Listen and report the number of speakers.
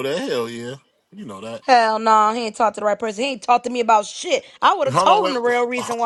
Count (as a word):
two